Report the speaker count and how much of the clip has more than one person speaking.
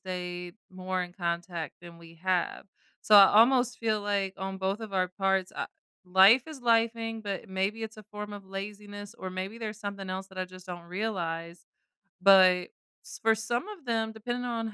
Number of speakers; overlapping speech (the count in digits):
1, no overlap